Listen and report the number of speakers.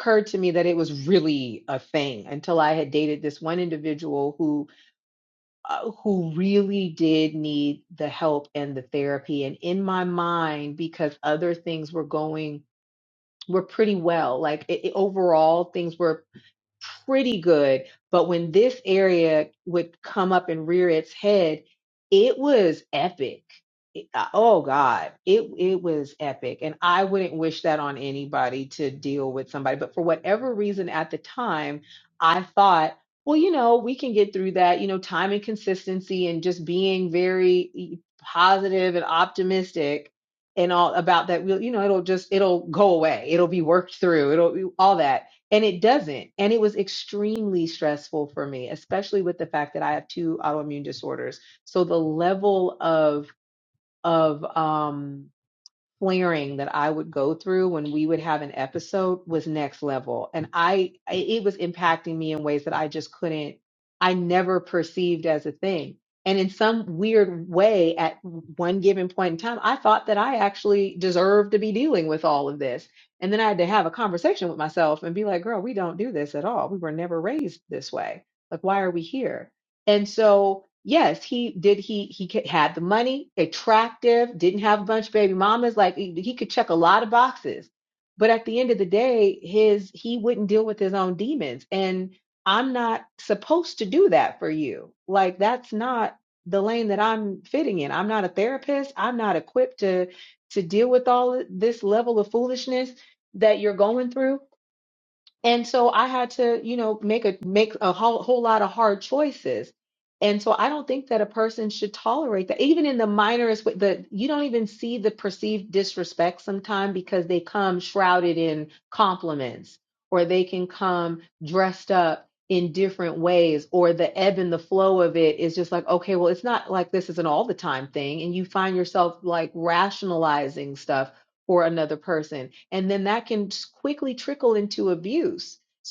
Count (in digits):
1